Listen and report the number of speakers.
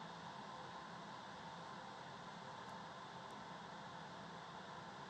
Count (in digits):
0